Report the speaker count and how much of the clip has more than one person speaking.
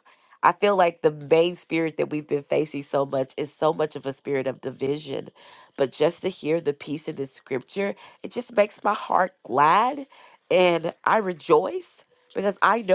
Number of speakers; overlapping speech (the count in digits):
1, no overlap